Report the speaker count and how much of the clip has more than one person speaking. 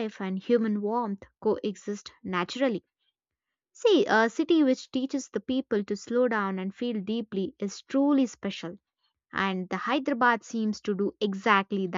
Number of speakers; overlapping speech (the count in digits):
1, no overlap